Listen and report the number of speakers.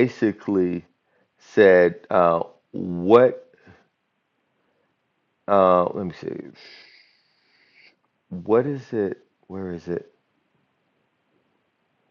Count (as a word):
one